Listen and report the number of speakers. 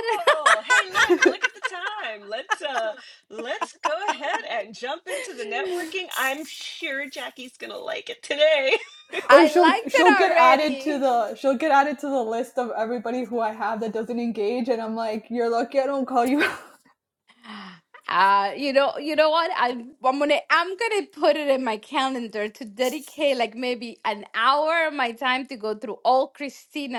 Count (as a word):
three